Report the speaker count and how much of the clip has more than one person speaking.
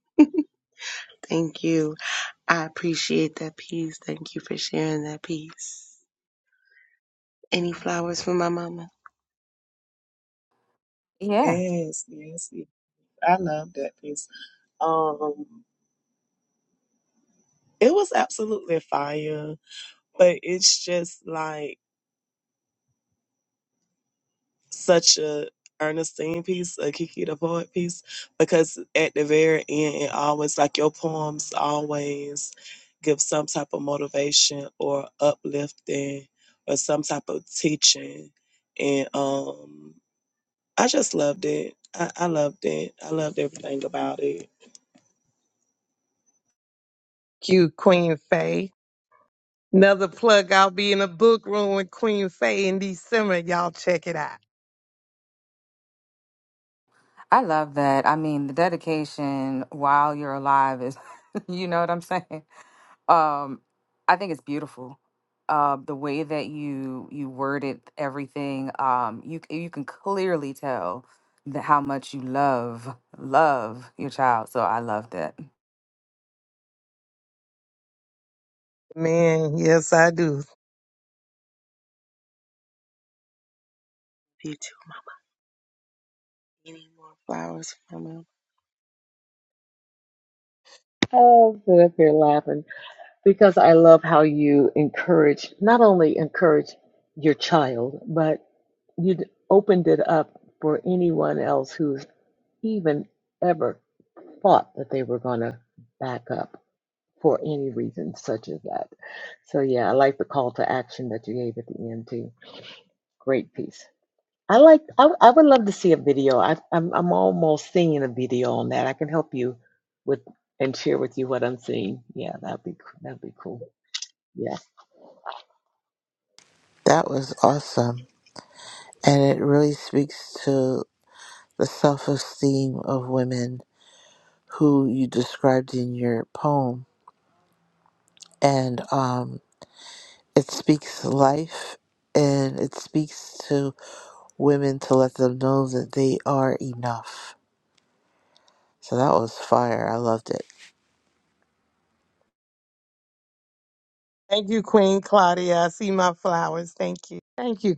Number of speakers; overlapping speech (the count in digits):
6, under 1%